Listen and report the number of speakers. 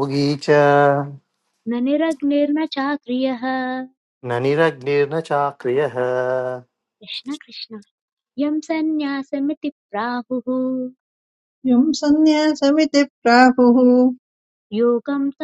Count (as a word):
three